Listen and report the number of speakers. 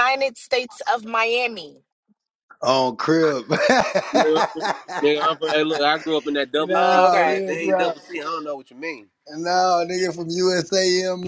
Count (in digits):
3